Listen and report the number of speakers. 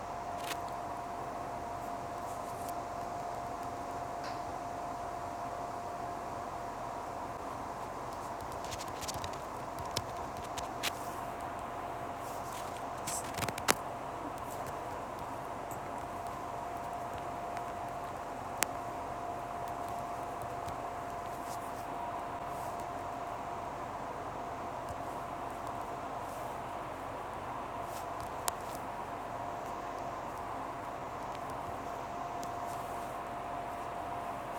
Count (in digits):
0